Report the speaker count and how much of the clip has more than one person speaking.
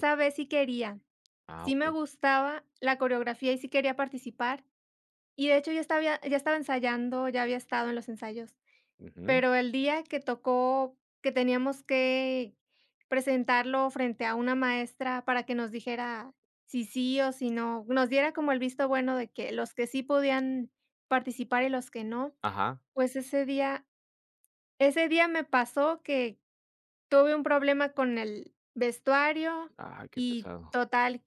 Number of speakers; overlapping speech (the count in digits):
2, about 3%